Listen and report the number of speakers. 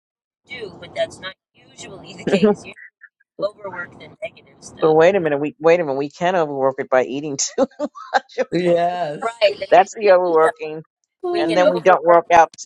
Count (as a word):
three